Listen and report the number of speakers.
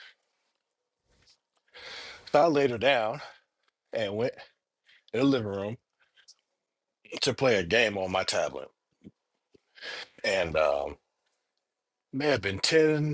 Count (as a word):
one